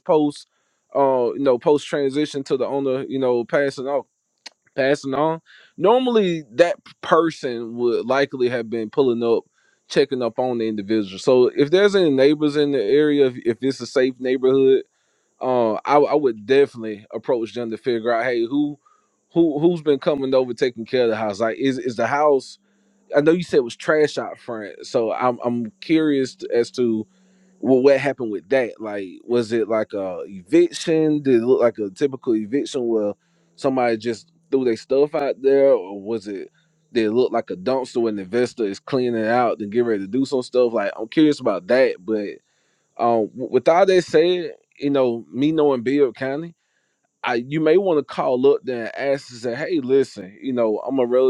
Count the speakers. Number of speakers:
one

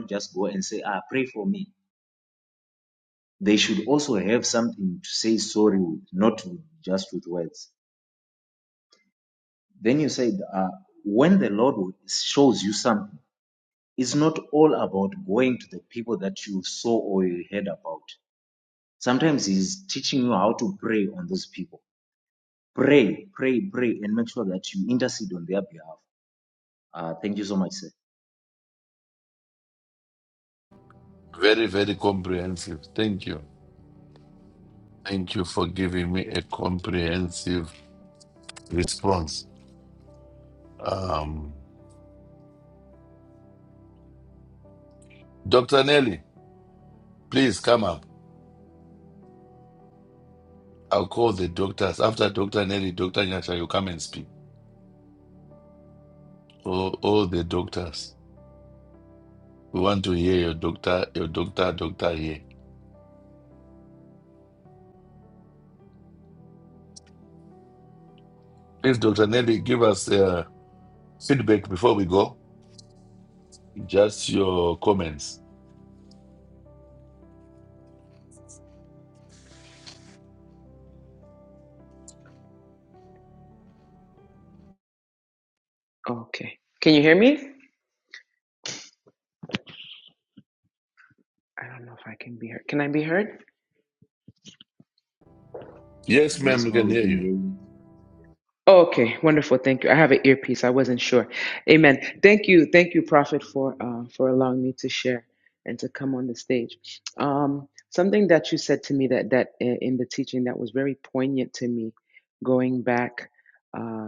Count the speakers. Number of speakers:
three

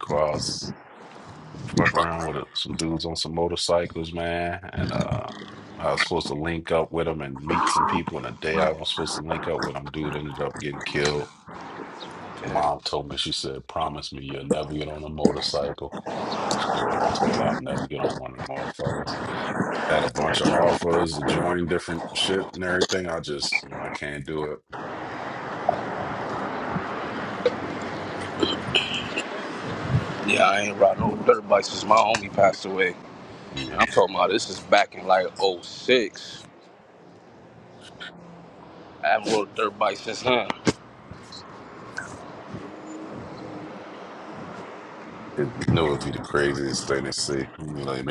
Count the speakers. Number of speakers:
two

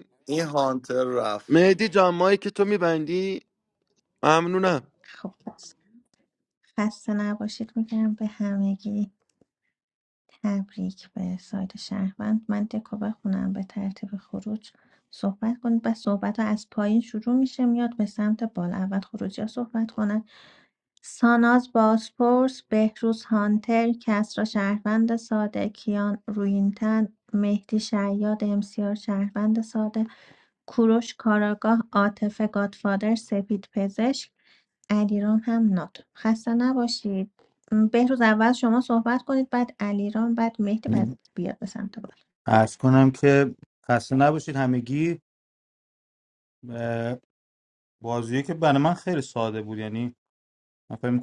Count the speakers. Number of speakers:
four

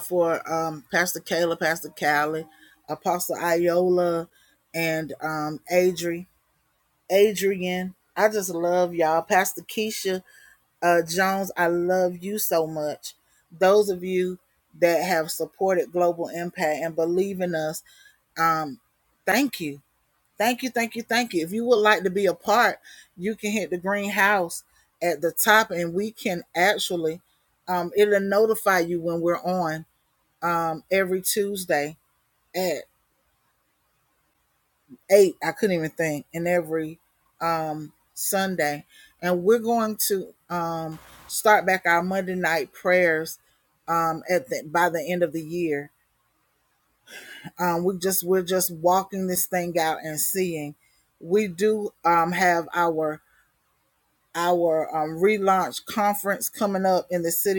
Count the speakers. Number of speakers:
one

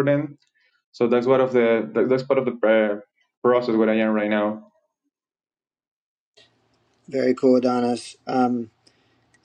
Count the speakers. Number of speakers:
two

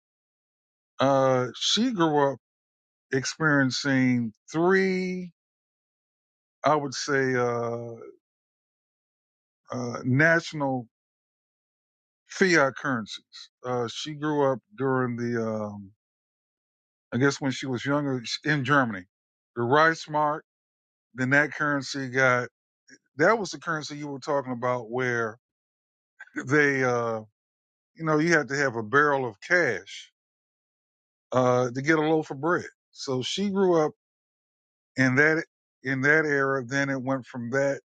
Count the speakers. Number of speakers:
one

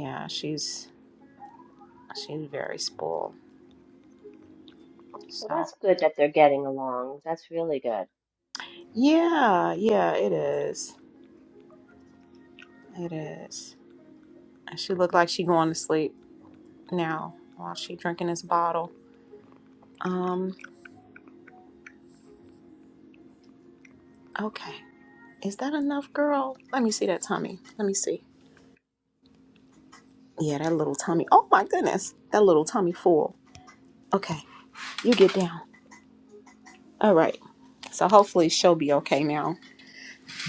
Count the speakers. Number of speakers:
two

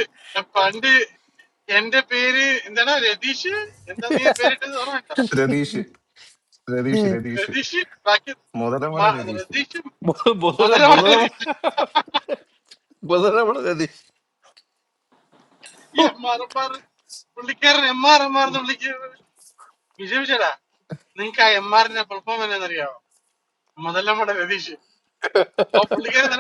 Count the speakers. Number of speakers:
three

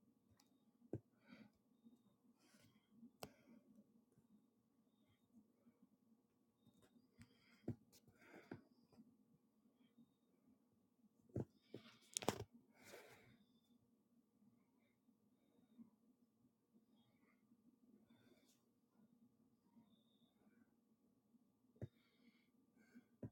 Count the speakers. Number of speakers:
zero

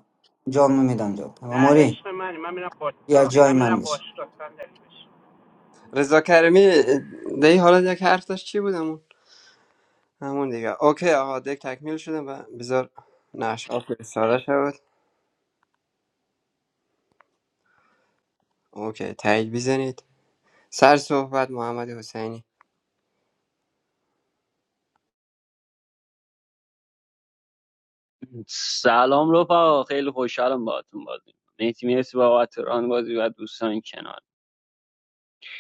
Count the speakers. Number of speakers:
four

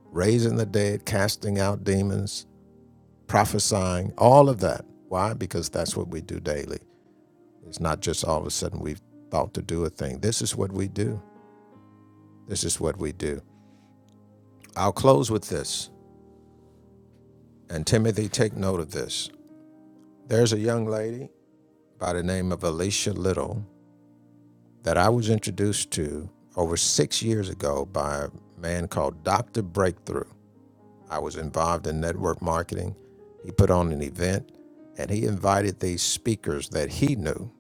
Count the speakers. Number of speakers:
one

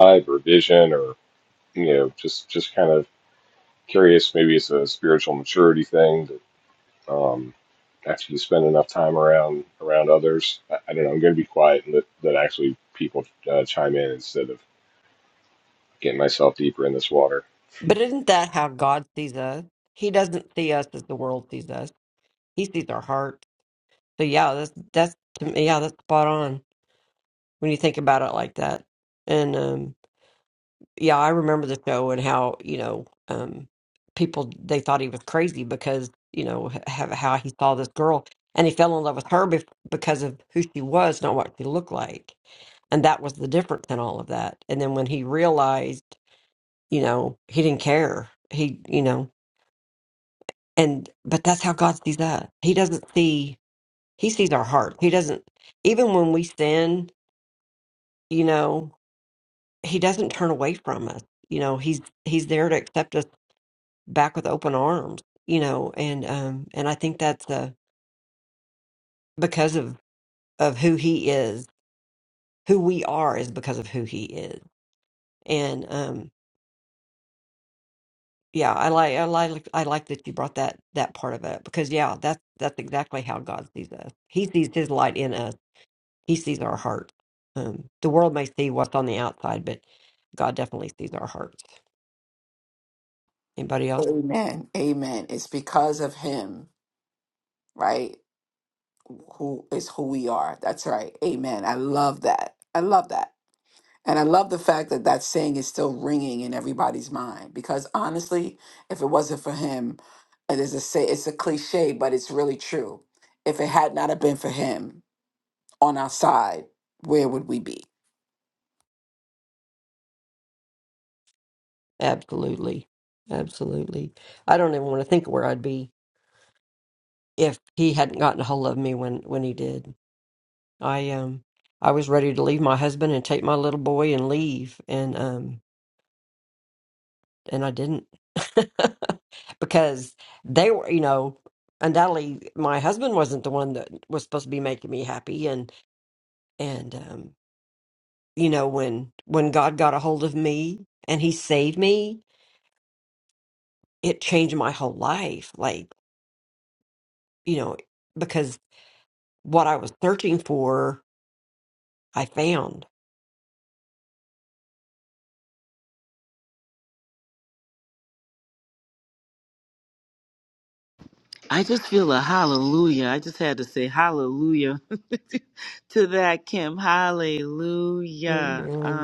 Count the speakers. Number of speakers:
four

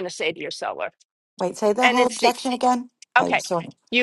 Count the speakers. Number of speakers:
two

